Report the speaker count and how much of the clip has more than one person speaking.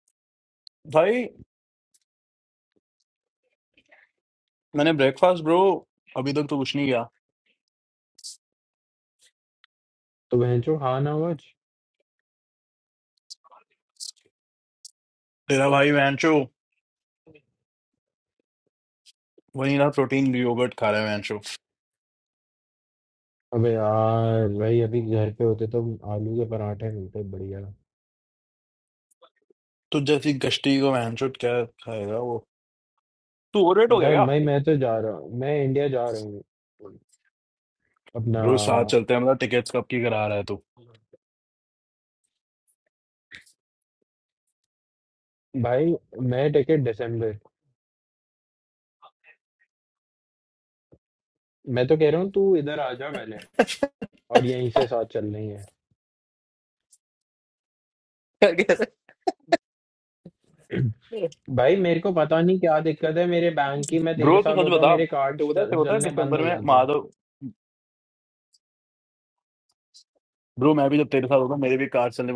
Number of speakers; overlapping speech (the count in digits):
2, about 3%